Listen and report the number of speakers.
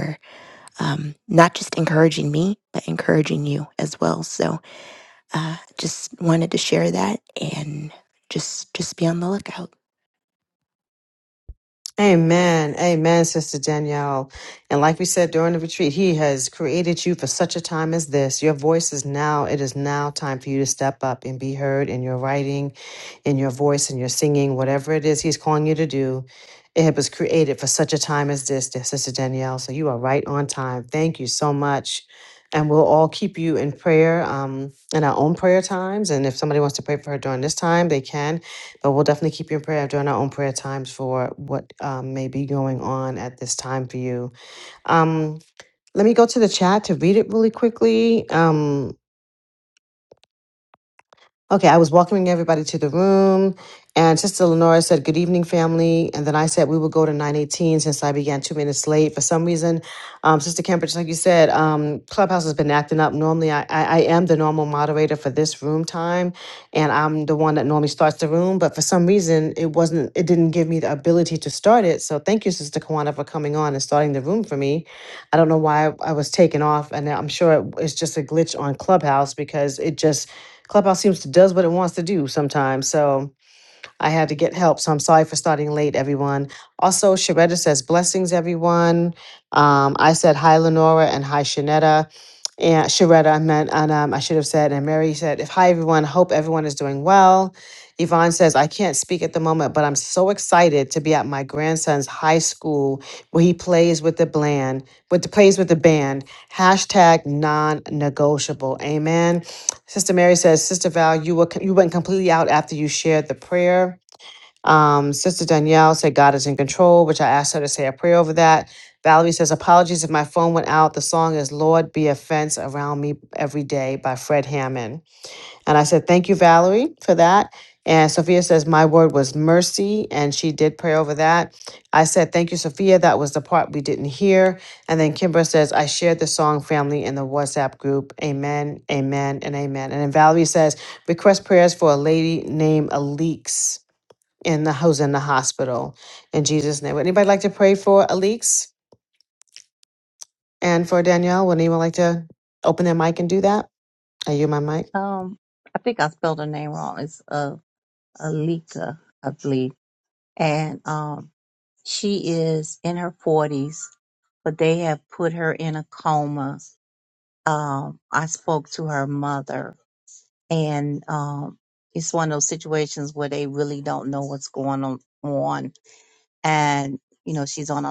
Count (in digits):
3